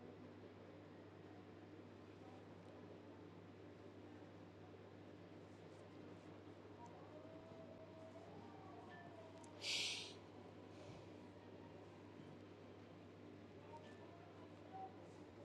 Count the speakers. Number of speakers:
zero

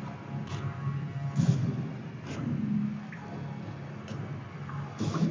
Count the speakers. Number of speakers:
zero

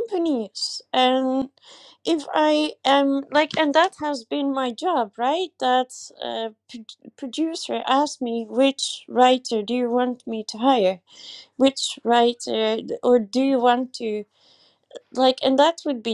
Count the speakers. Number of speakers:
one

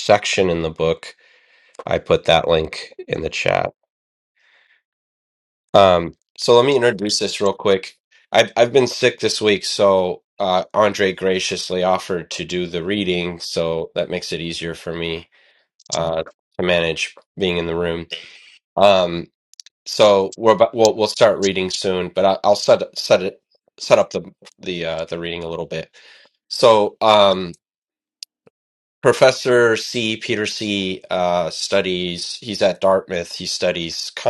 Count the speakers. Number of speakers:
one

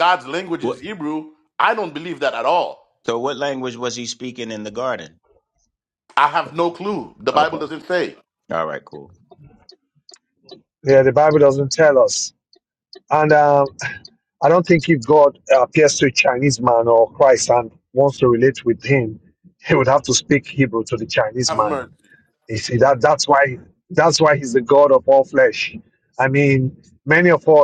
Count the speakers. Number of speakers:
three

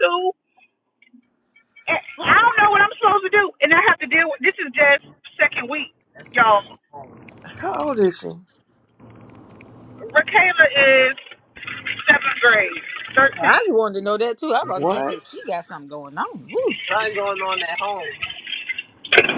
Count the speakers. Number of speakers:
four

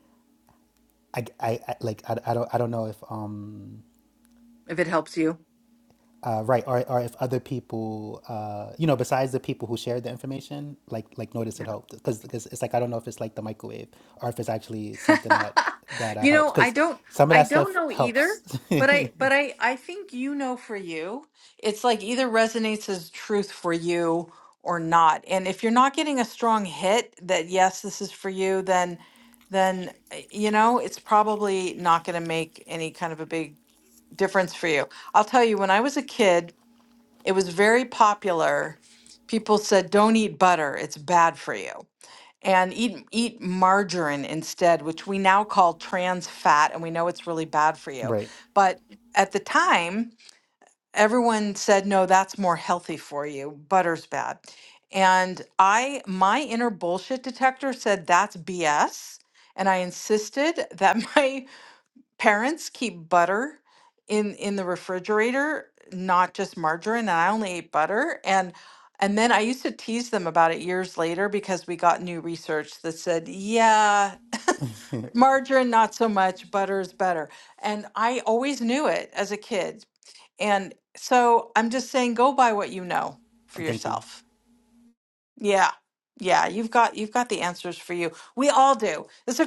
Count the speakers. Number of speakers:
two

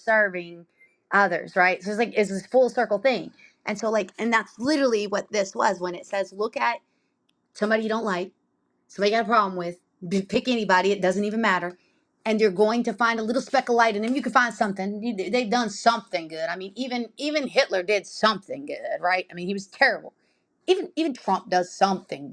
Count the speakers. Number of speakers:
one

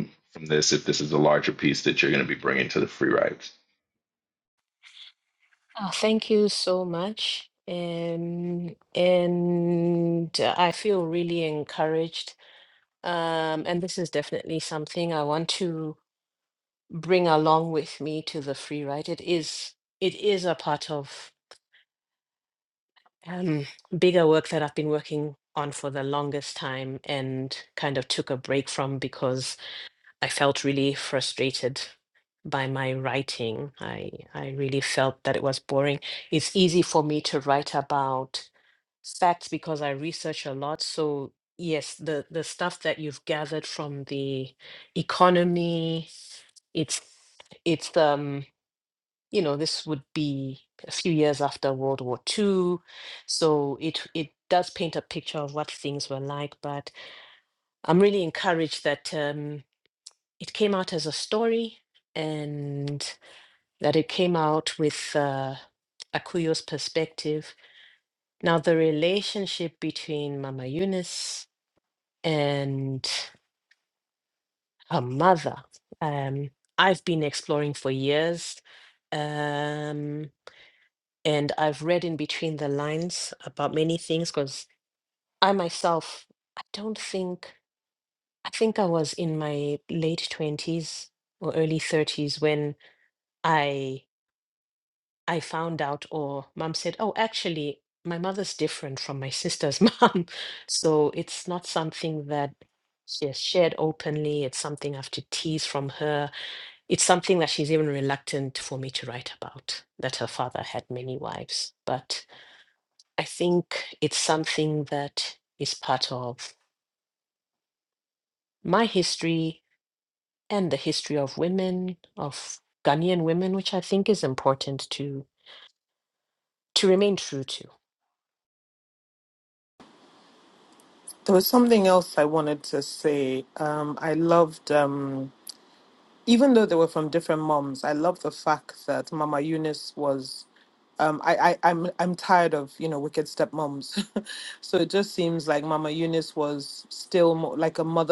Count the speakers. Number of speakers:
three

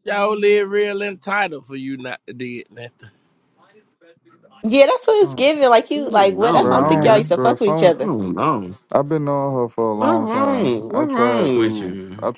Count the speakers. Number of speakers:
four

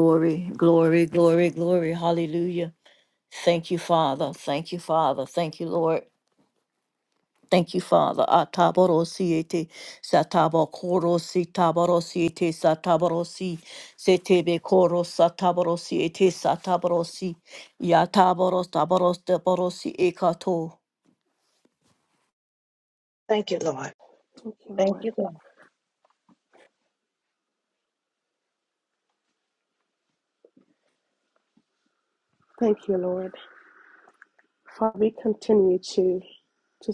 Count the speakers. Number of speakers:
three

